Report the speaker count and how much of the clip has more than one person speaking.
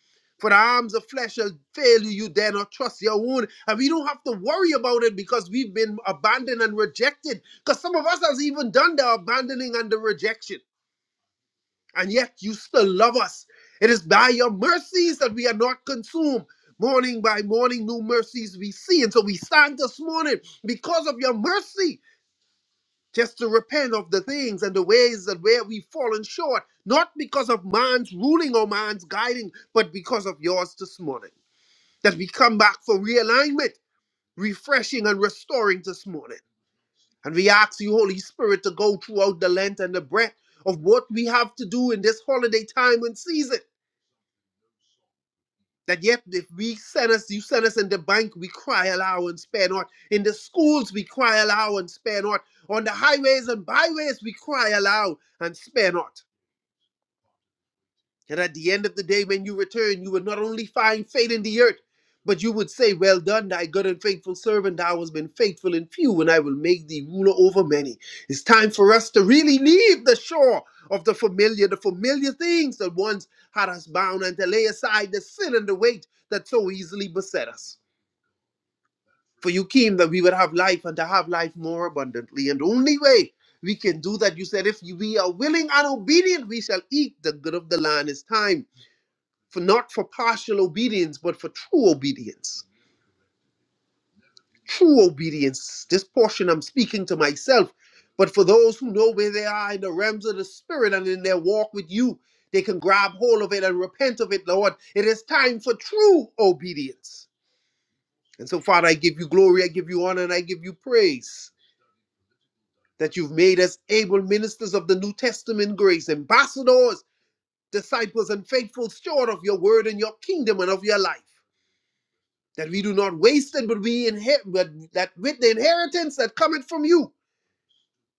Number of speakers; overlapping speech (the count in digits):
1, no overlap